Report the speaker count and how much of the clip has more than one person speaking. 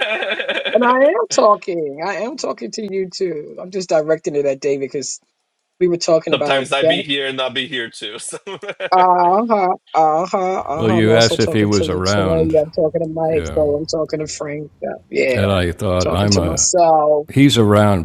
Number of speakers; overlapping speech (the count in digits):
3, about 20%